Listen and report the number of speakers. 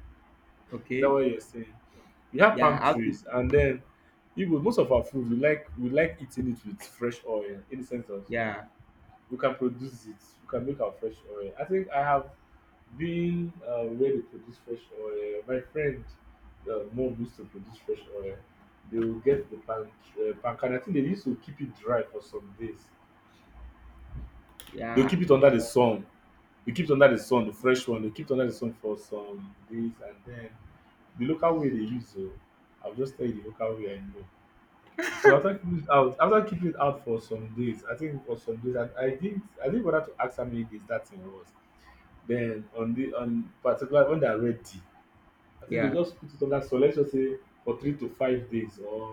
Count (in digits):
2